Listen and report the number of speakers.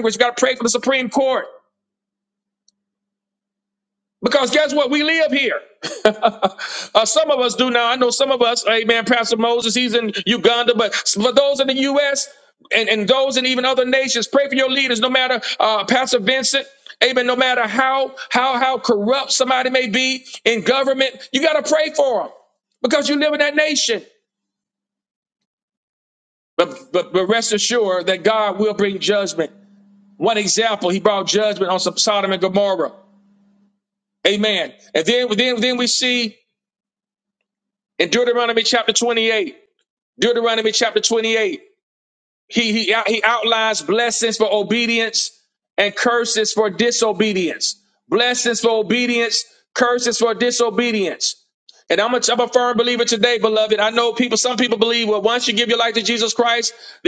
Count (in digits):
1